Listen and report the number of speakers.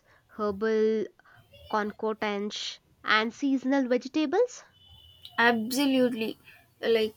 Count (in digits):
2